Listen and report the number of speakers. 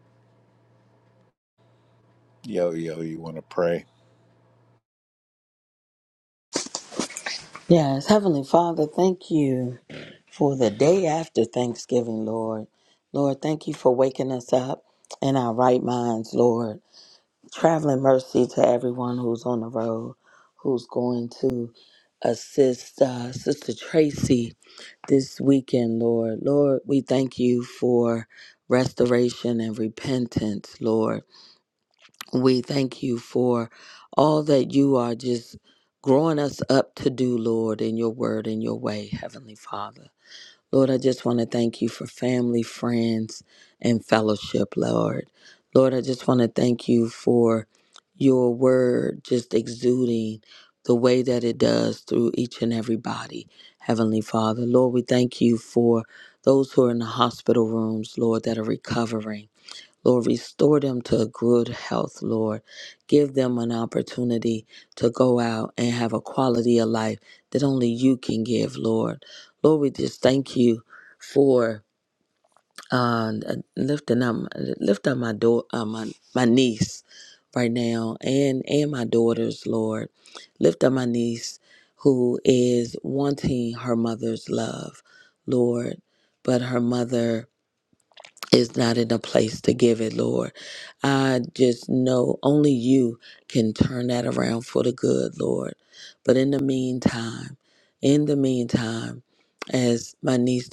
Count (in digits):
2